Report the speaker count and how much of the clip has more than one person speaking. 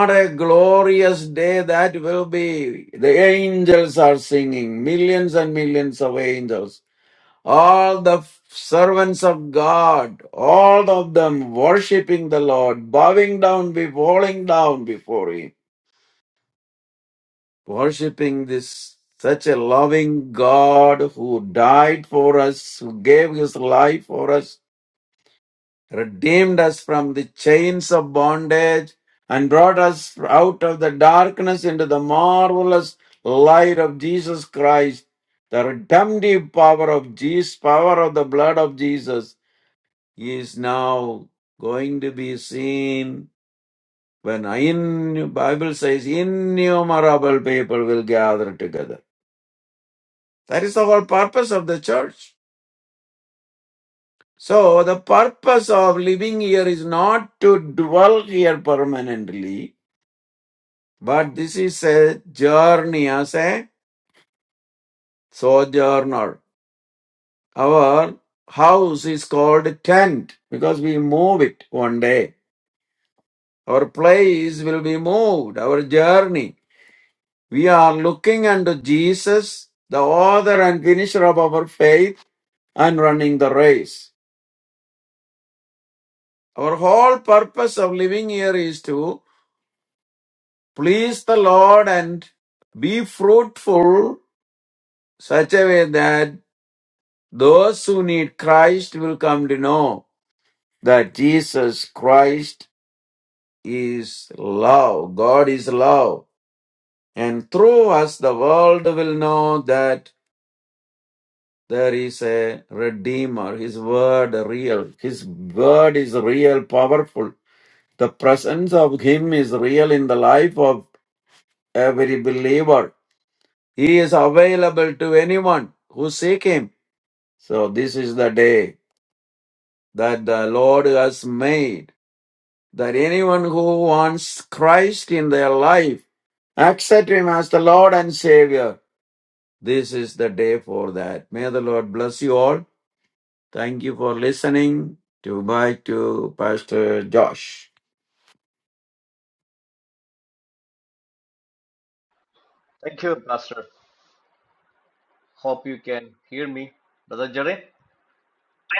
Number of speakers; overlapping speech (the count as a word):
two, no overlap